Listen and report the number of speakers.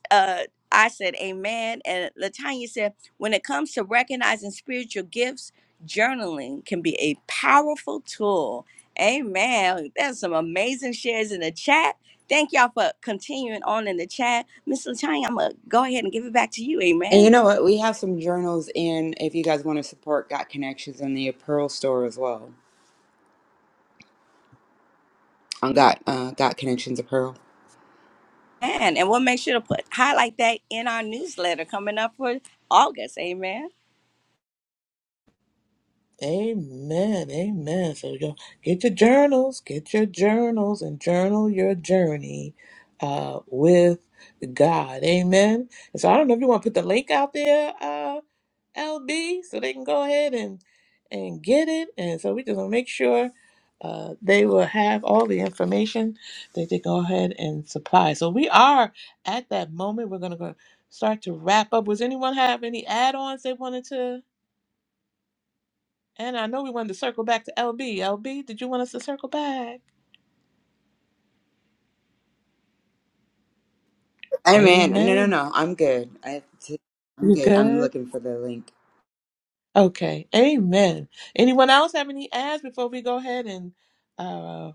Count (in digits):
3